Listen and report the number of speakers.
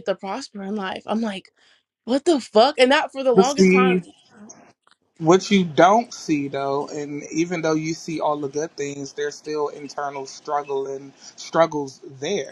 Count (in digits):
2